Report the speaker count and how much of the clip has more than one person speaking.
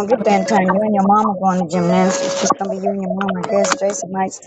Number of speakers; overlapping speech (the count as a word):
one, no overlap